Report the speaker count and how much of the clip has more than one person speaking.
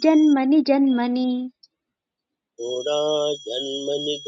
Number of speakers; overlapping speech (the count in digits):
2, no overlap